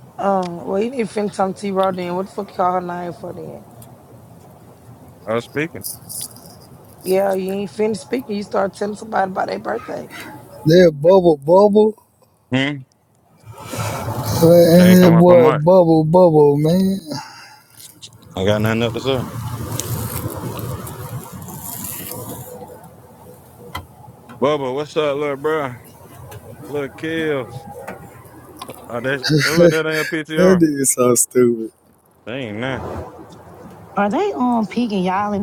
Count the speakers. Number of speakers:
four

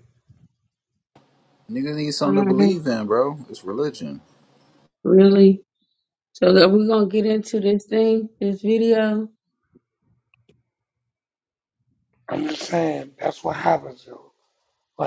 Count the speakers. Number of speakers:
three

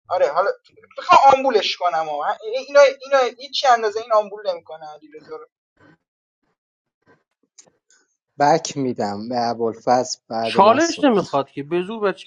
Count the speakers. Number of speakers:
three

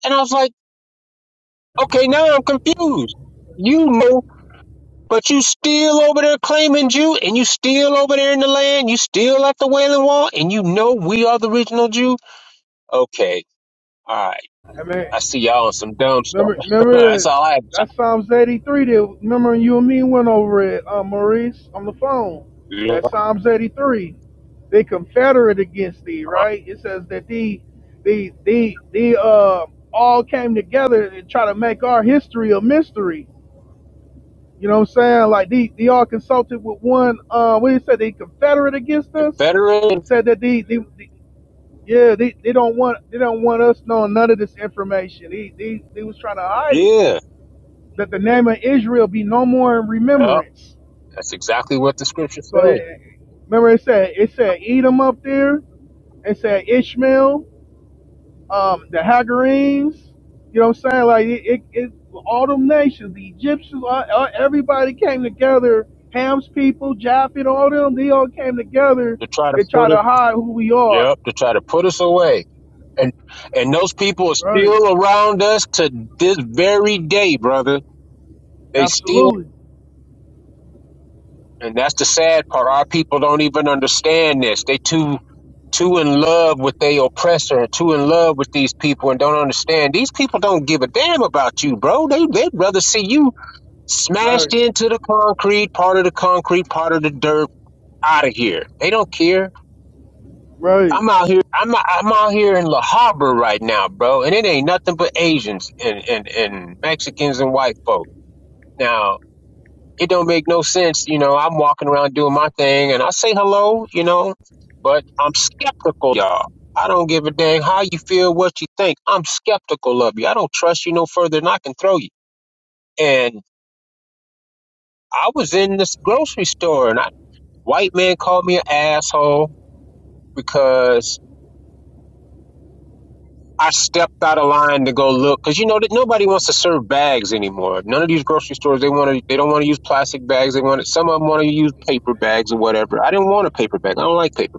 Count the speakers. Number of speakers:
two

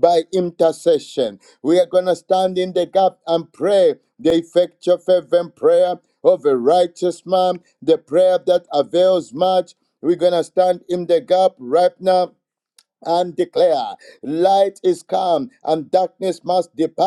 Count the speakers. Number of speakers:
one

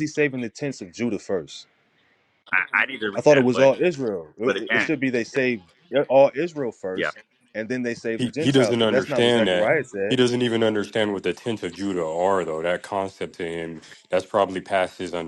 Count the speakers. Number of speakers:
three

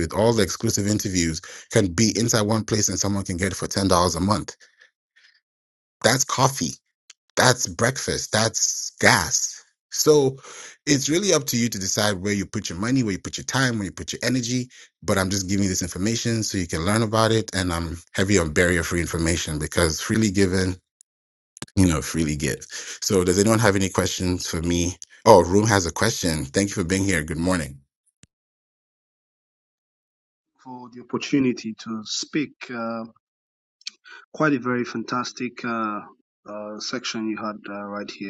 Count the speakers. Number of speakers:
two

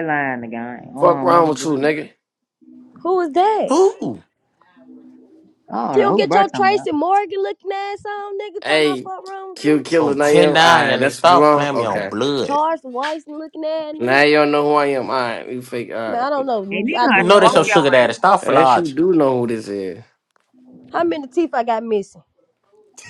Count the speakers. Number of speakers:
four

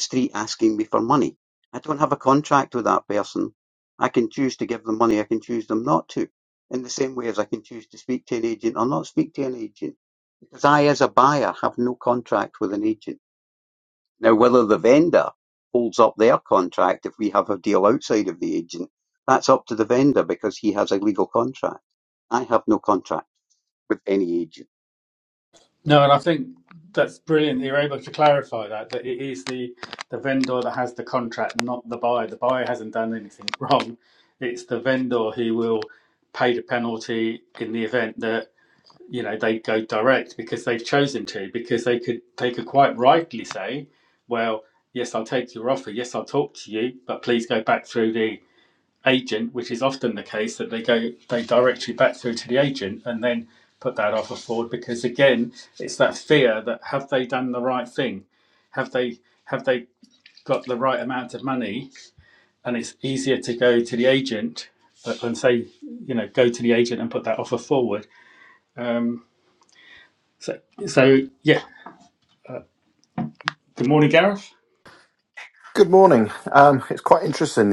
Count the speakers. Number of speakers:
three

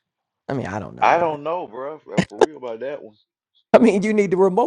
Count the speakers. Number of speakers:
two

